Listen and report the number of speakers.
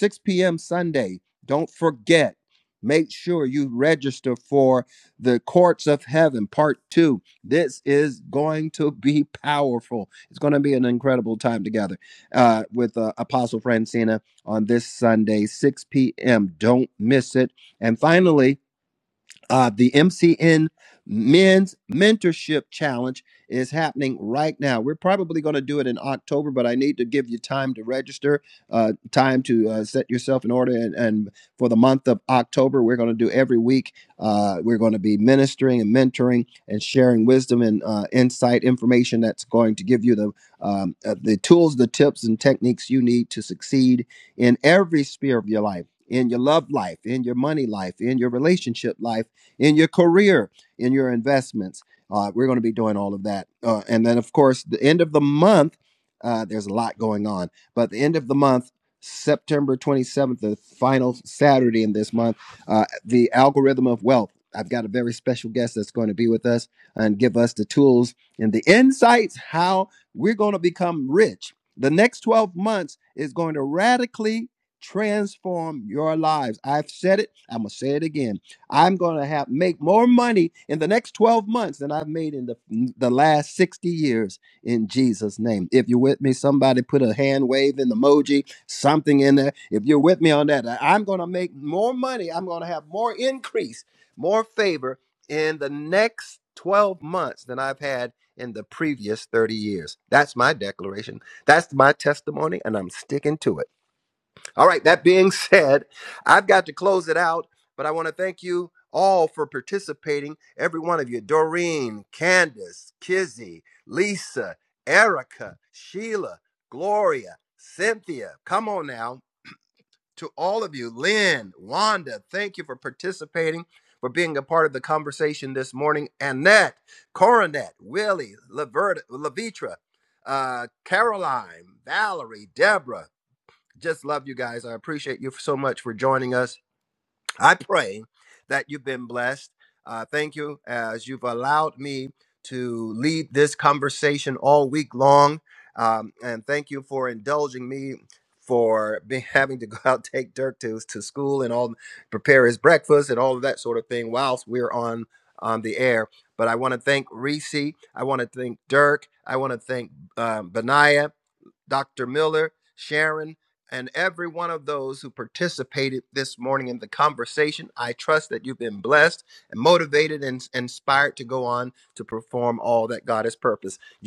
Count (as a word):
one